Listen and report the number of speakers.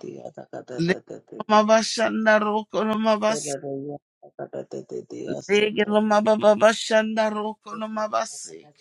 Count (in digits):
2